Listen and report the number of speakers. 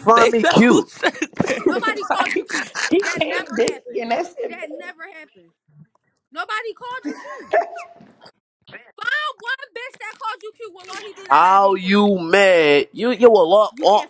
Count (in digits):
4